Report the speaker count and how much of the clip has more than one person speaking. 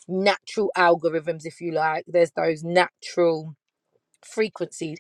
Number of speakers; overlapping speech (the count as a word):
one, no overlap